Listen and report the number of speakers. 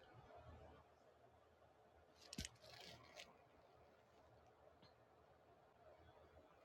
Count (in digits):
0